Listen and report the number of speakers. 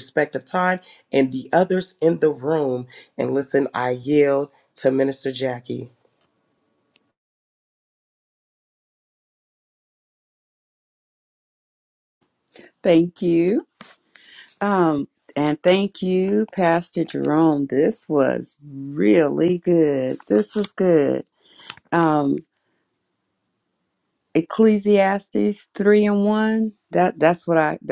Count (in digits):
2